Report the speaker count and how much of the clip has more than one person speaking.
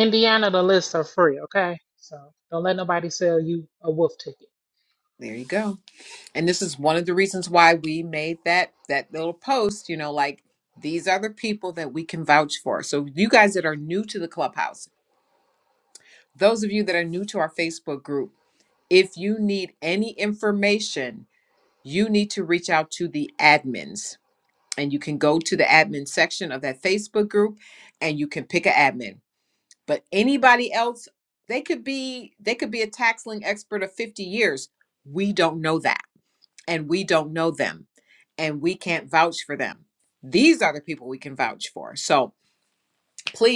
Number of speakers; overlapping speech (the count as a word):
two, no overlap